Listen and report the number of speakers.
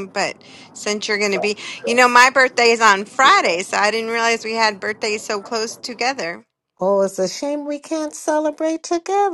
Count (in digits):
2